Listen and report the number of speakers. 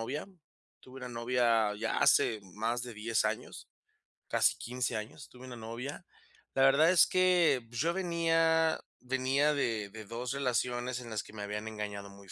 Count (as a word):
one